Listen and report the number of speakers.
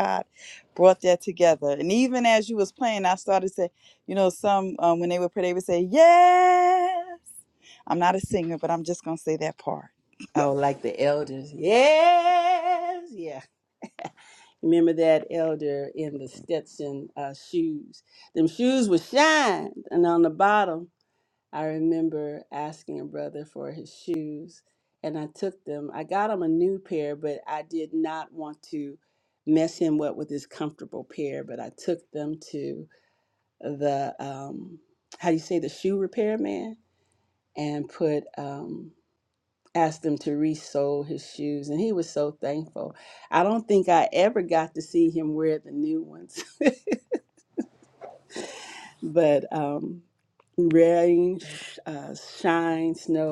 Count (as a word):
two